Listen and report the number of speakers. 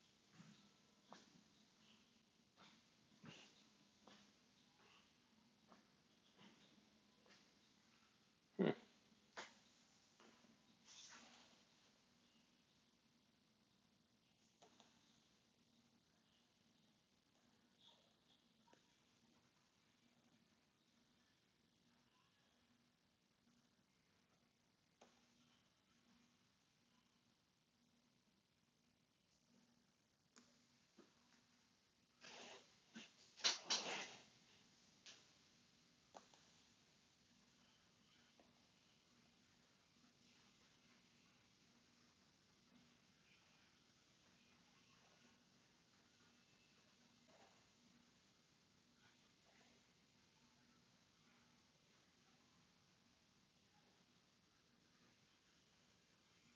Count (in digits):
0